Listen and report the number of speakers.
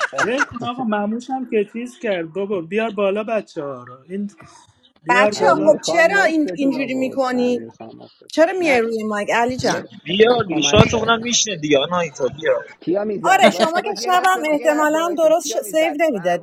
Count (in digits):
4